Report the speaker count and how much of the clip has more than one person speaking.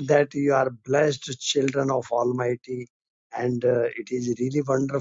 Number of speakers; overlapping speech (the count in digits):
1, no overlap